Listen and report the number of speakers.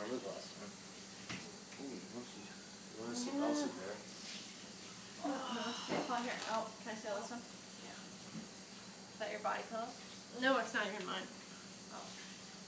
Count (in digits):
3